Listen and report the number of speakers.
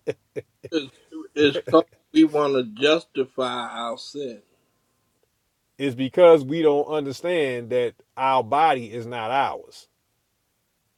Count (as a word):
two